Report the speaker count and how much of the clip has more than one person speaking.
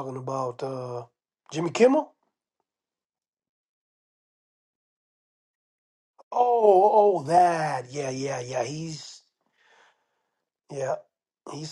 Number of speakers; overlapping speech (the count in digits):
1, no overlap